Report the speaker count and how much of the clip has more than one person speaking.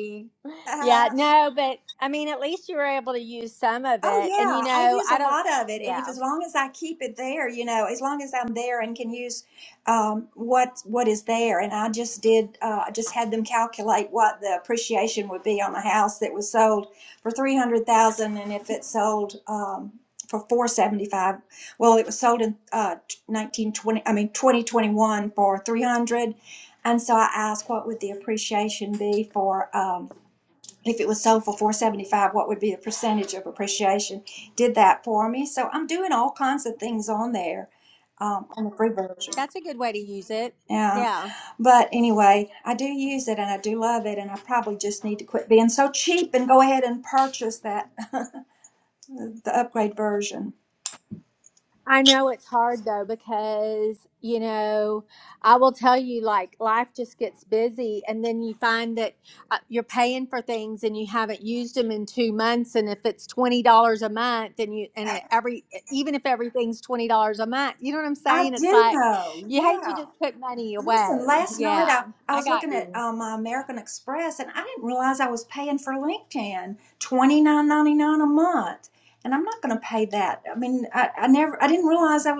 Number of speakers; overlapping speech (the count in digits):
2, about 6%